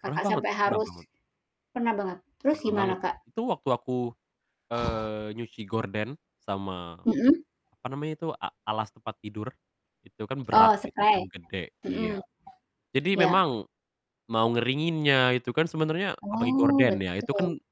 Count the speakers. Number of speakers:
two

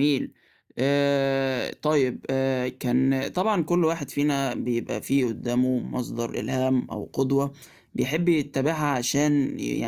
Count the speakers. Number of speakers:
one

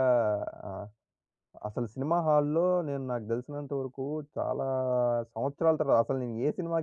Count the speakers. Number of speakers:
one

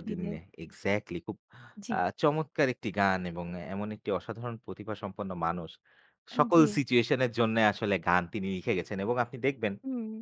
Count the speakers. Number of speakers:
two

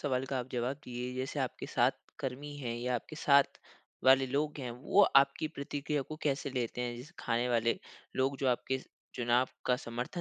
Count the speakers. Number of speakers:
one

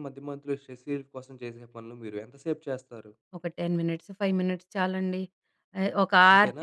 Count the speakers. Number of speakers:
two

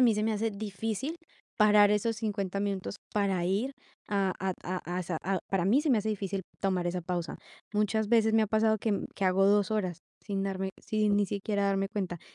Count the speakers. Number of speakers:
one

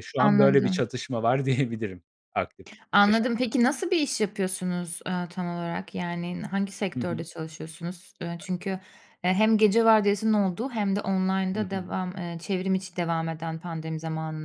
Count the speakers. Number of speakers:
two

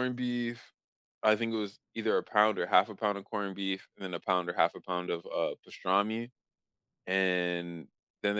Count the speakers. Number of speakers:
one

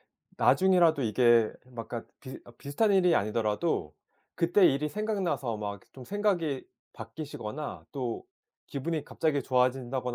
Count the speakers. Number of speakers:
one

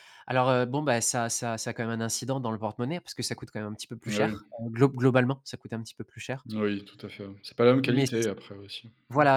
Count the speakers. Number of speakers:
two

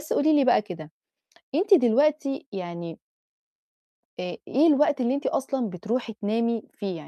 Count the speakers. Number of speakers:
one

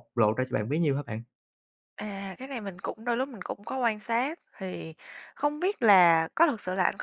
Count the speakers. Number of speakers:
two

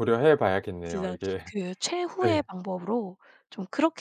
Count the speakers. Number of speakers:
two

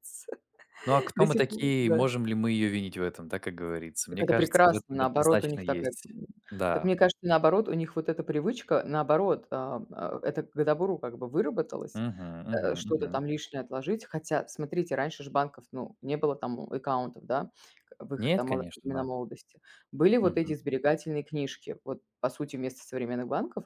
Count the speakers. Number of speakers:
two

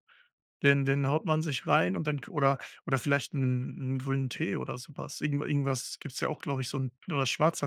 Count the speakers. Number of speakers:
one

